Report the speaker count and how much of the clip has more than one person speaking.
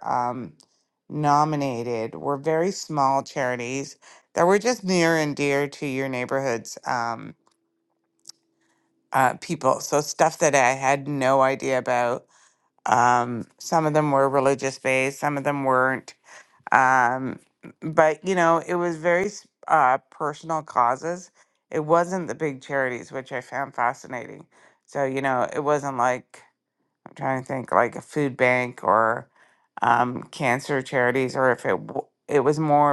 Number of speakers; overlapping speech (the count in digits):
1, no overlap